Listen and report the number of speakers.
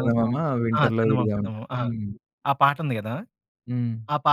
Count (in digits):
2